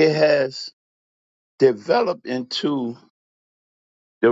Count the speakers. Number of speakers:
1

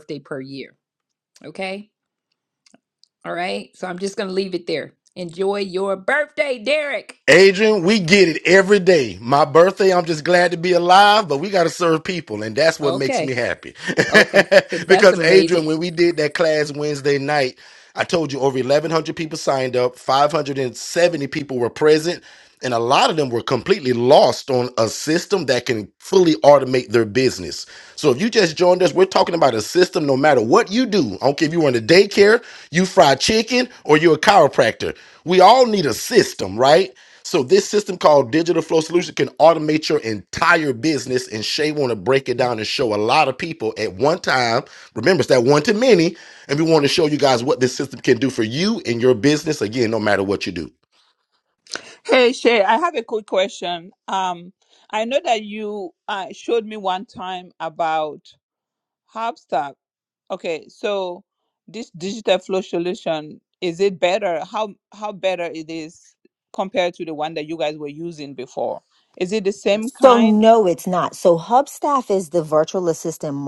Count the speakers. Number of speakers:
4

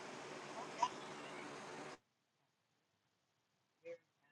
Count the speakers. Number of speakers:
0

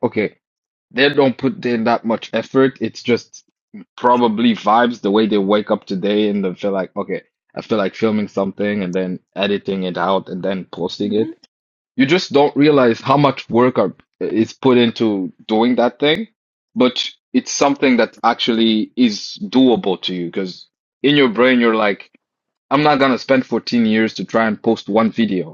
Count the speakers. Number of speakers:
1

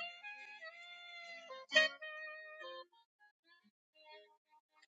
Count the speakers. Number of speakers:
0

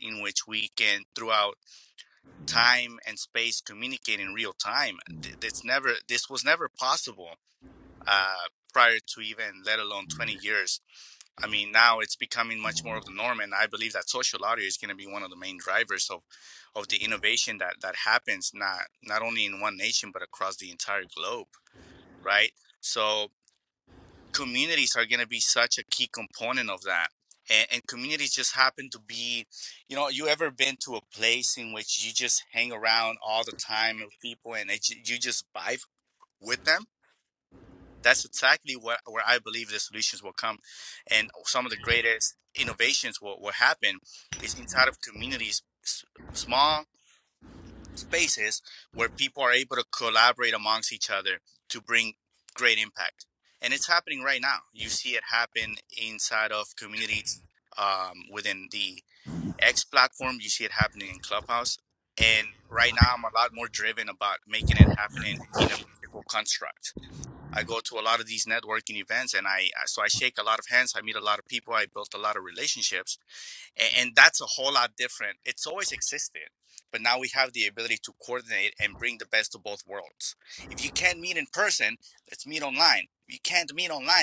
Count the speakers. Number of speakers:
1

